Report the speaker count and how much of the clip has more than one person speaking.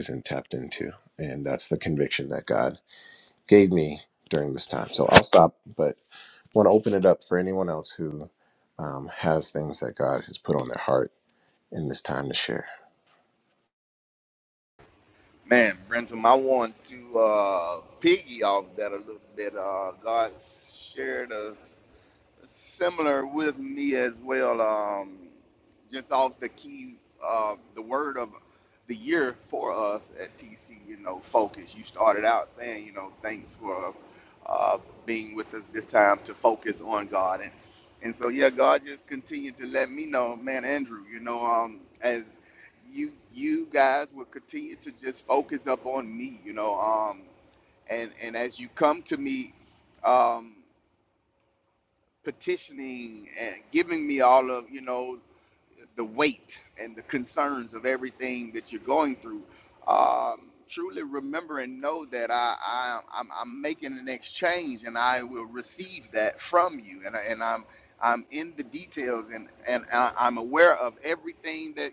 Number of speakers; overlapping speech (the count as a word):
two, no overlap